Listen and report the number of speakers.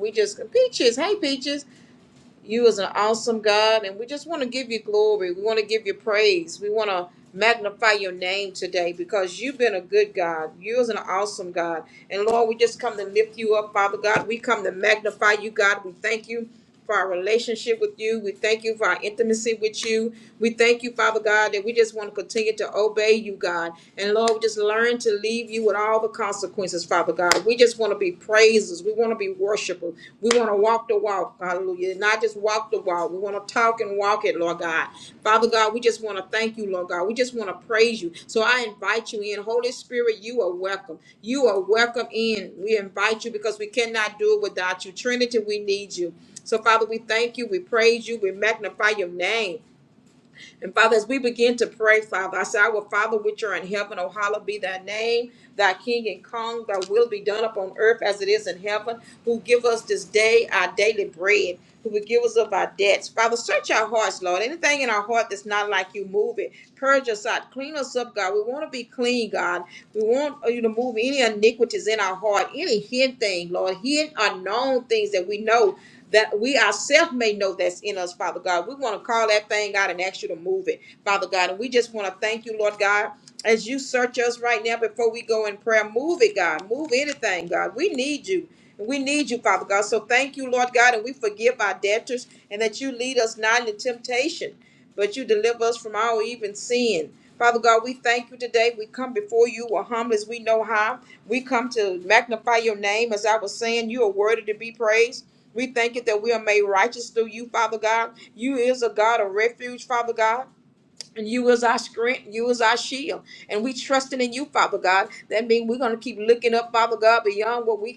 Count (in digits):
1